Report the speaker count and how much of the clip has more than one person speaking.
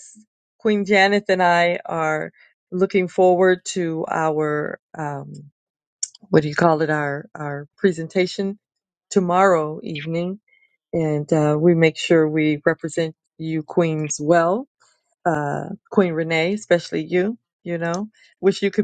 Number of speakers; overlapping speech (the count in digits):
1, no overlap